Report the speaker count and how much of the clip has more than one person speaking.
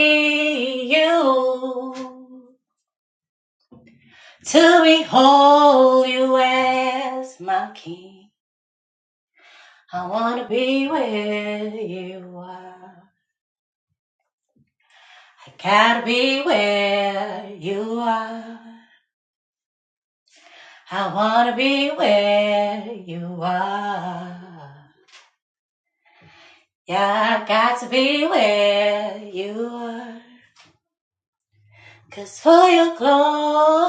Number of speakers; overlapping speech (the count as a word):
one, no overlap